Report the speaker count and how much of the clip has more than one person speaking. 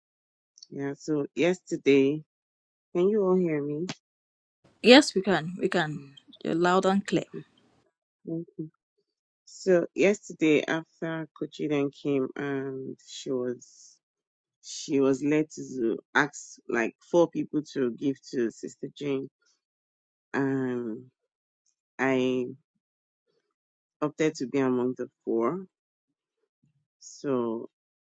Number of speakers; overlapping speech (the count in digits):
2, under 1%